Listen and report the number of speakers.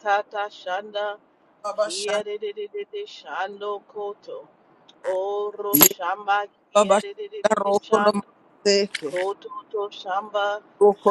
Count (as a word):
two